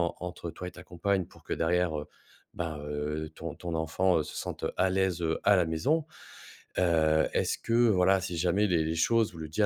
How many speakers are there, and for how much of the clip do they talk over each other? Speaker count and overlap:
1, no overlap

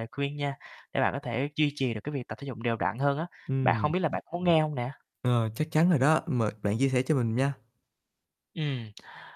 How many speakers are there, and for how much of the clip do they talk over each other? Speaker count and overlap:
2, about 3%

